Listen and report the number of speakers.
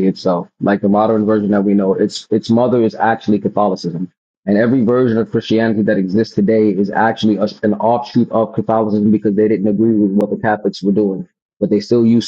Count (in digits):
1